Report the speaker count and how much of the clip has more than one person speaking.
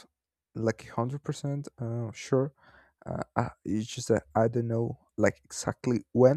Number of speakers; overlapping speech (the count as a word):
one, no overlap